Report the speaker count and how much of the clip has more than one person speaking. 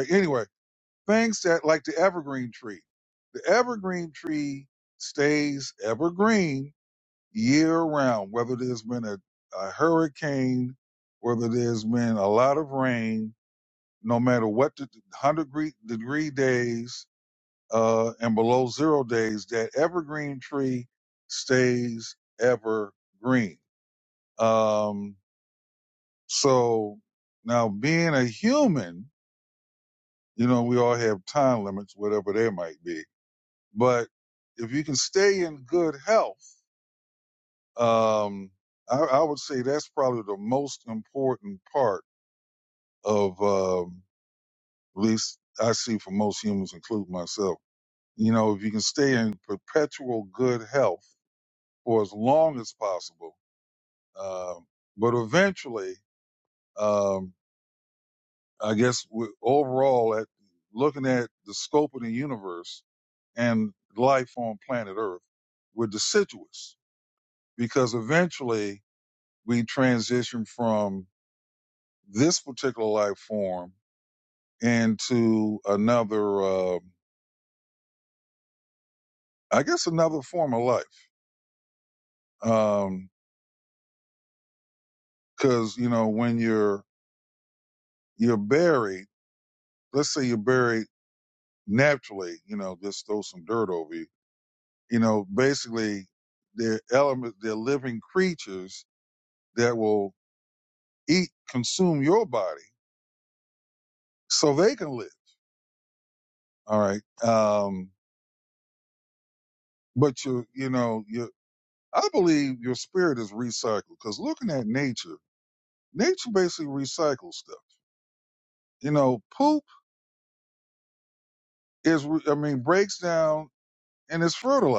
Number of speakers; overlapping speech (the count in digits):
1, no overlap